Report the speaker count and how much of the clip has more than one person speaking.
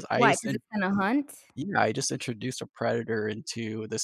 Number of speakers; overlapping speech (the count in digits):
2, about 11%